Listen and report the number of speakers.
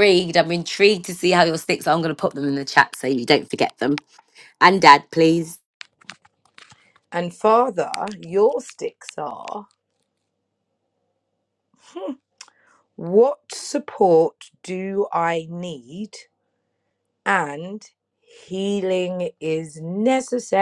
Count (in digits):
2